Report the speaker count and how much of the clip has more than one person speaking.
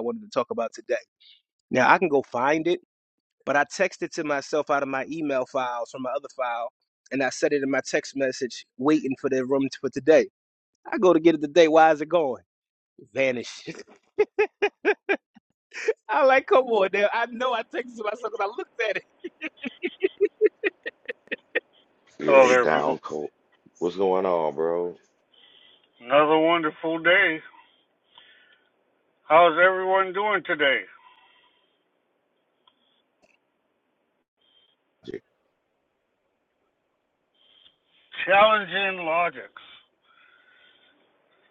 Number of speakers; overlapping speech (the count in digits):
3, about 2%